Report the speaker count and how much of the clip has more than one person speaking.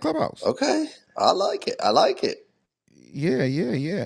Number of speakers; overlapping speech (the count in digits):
2, no overlap